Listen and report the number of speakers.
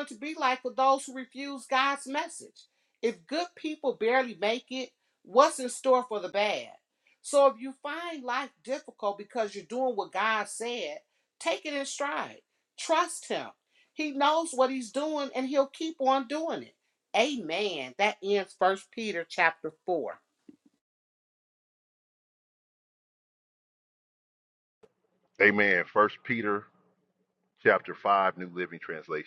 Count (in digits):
2